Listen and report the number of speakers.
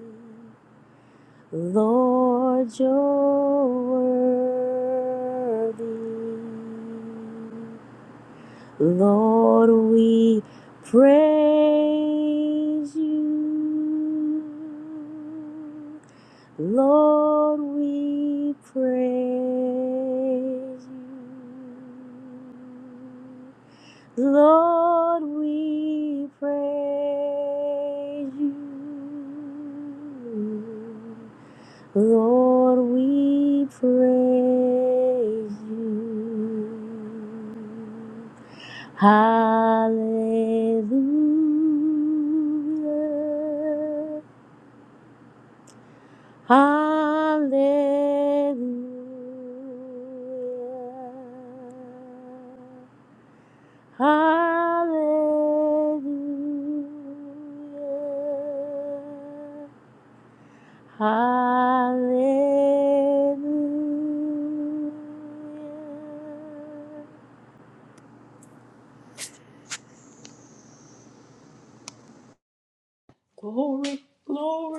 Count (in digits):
2